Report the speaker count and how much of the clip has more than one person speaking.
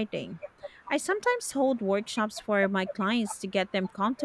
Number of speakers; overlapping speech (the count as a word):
one, no overlap